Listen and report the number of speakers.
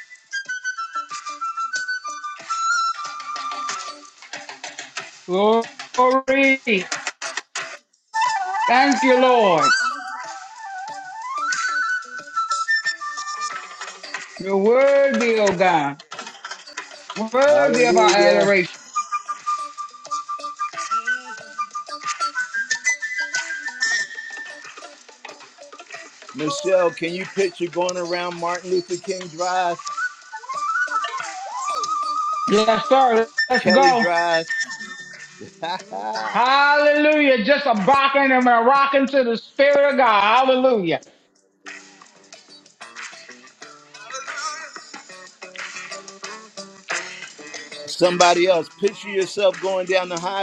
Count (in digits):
2